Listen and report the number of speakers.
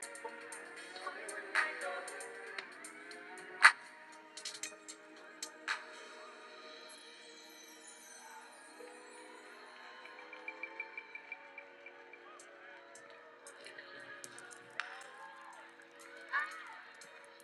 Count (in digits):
0